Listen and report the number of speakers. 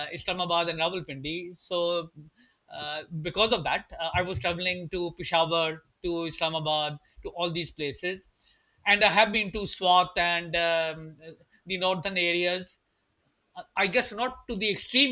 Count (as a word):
one